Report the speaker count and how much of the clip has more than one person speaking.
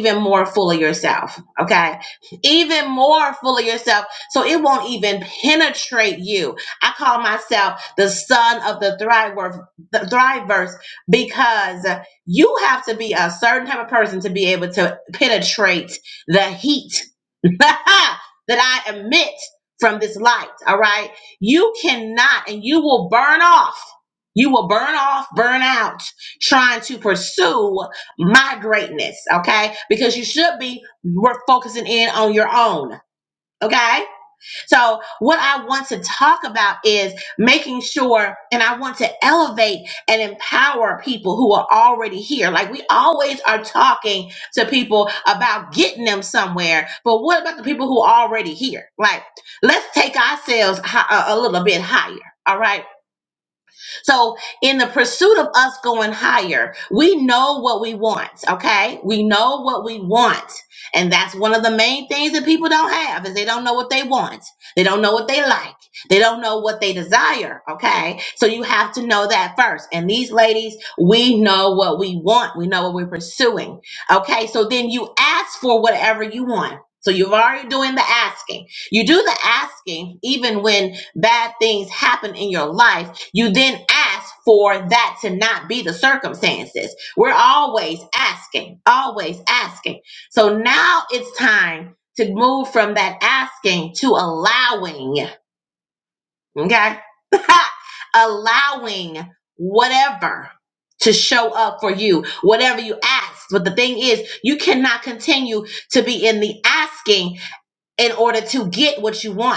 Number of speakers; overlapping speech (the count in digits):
1, no overlap